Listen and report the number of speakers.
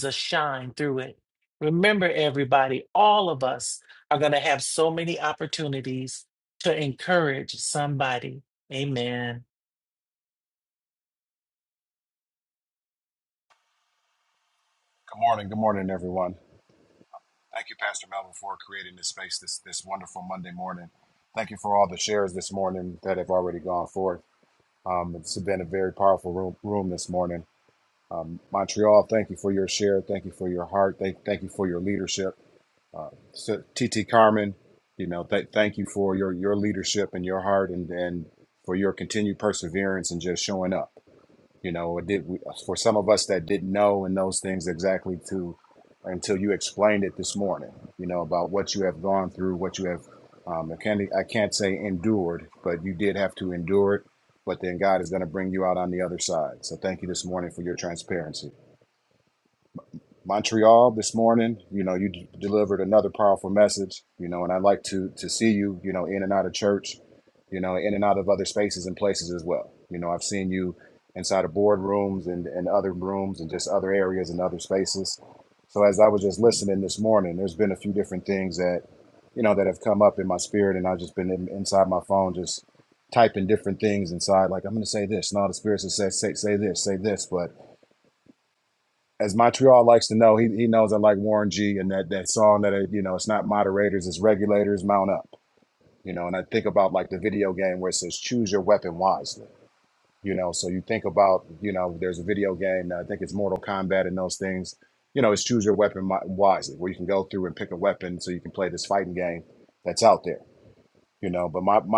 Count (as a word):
two